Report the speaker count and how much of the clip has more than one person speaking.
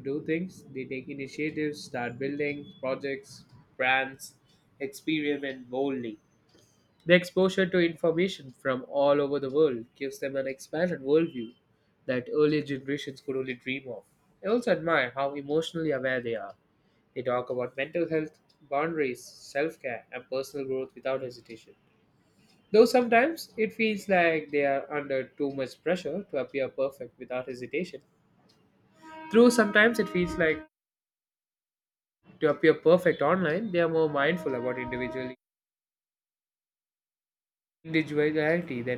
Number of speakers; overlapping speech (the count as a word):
one, no overlap